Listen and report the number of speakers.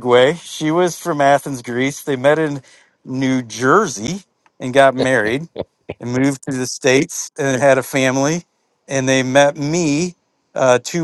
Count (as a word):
one